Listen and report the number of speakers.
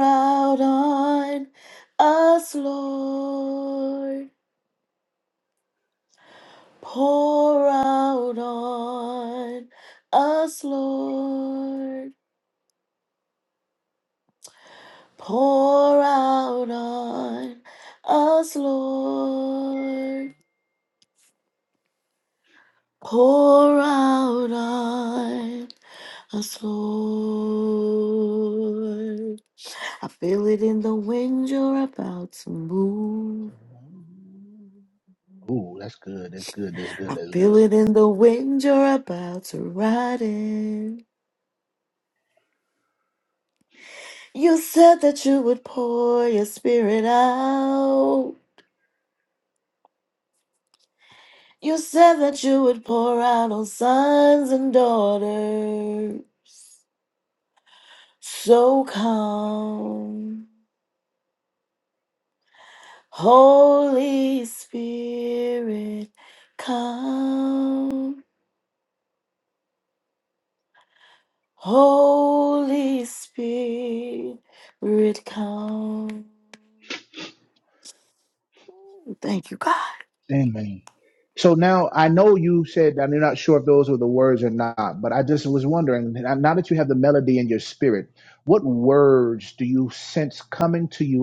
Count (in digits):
2